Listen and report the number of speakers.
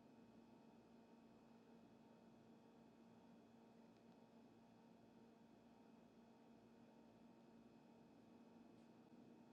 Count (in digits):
0